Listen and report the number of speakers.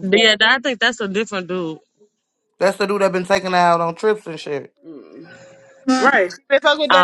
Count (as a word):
three